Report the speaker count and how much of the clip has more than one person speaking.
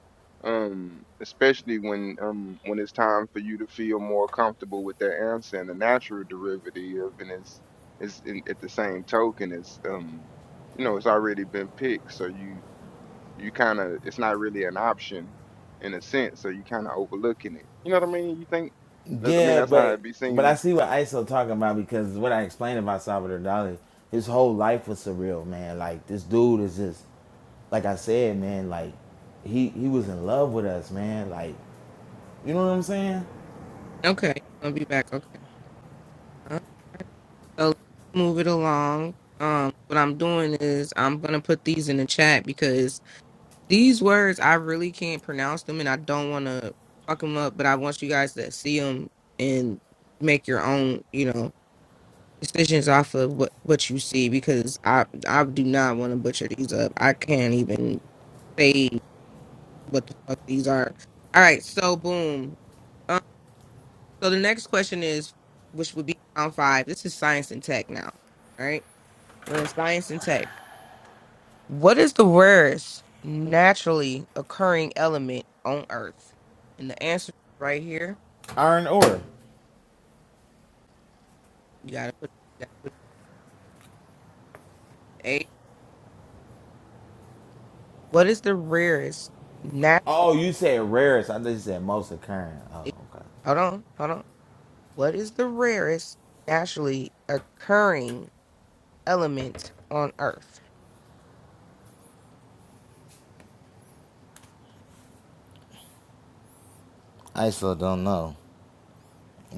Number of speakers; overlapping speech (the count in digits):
3, about 1%